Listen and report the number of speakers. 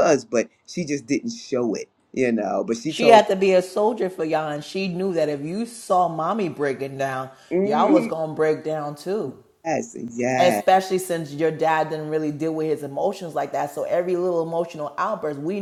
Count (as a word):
two